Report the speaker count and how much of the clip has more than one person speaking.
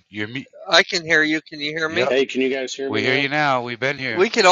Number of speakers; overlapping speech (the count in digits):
3, about 17%